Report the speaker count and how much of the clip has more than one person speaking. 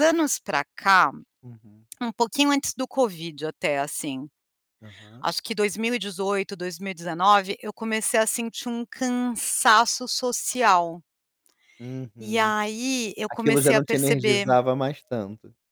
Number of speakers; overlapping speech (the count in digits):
2, about 10%